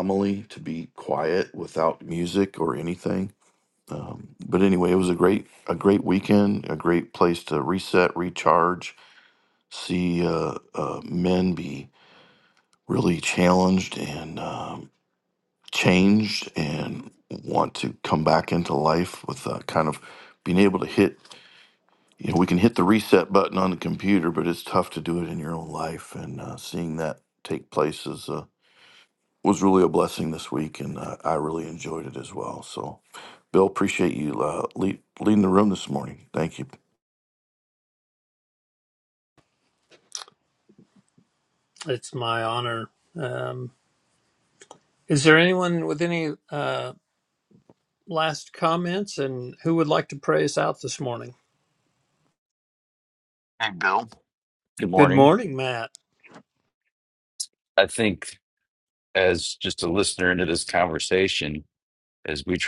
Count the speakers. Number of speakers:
3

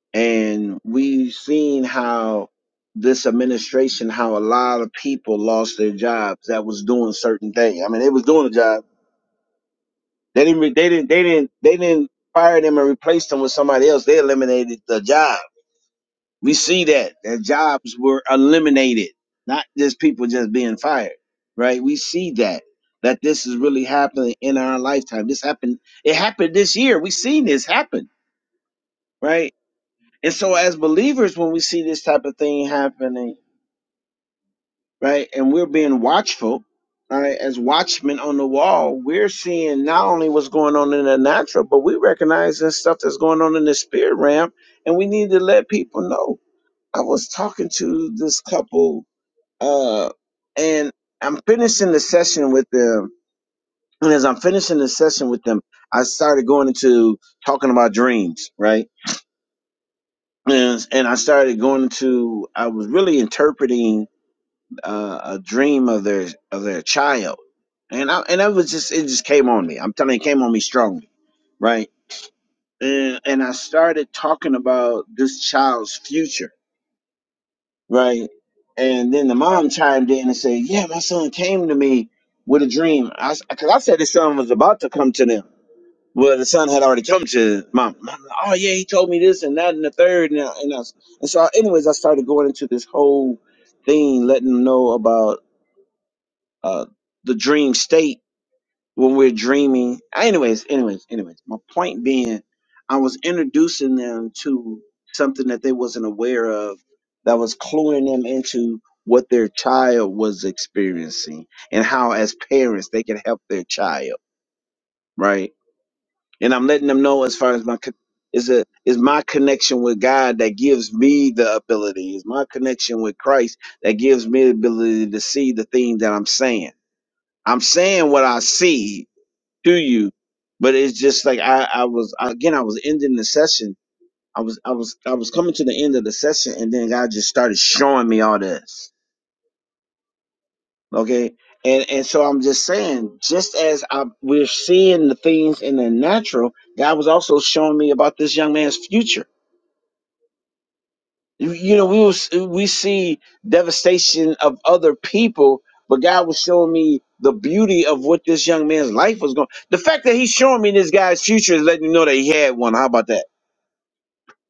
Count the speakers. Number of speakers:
1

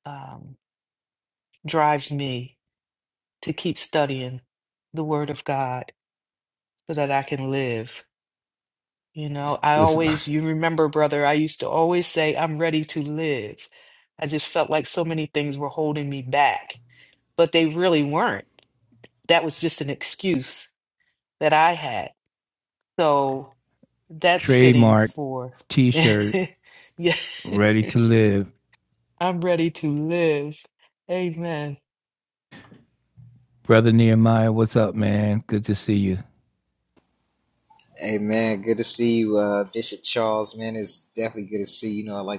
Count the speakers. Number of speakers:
3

